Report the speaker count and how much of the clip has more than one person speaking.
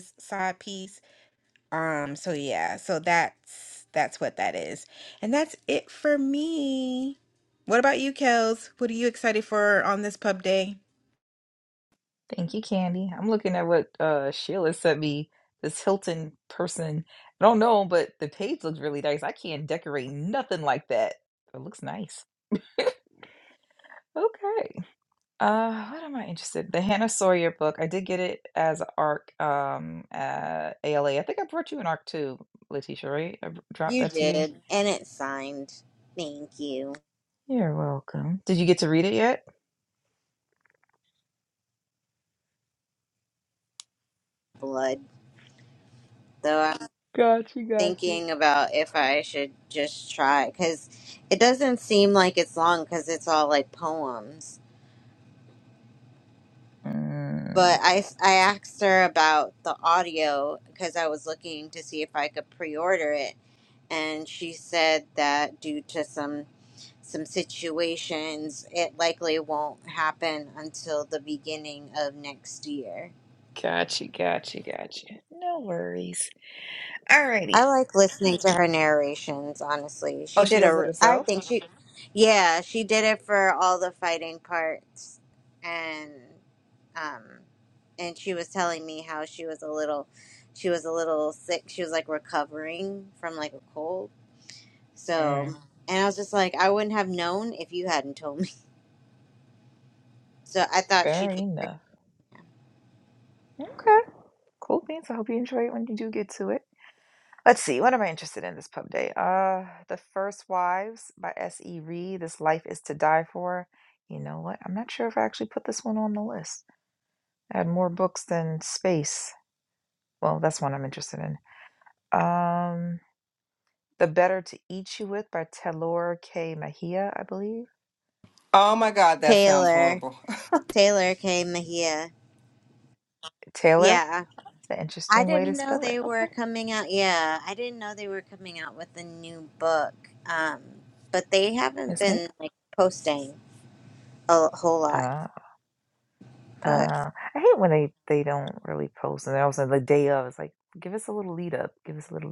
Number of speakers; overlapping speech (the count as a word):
four, about 4%